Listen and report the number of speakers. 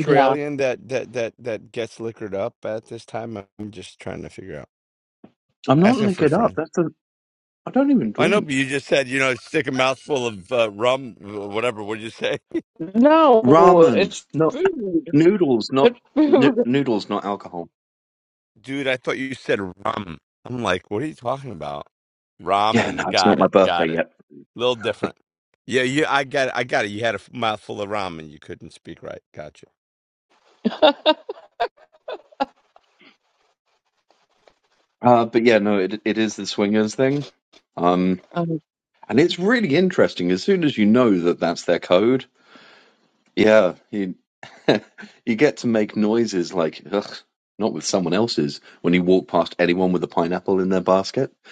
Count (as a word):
three